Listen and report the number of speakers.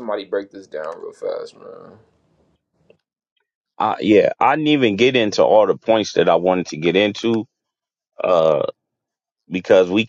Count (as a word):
two